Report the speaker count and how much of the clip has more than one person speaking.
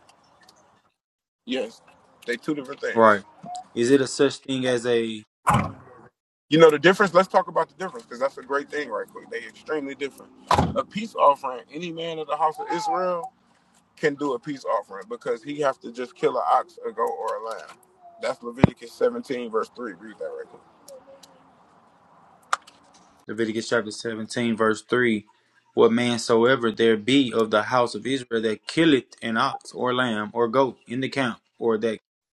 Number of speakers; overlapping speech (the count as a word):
two, under 1%